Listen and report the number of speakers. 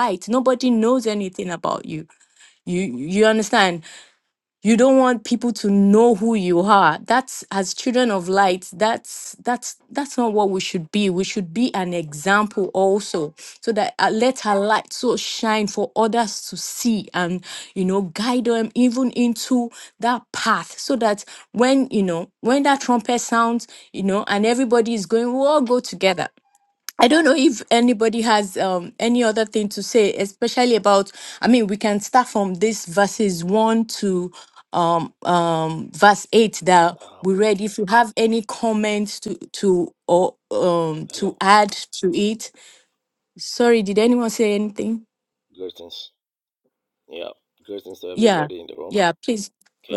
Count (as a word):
two